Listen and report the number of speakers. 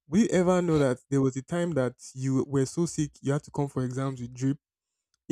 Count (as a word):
one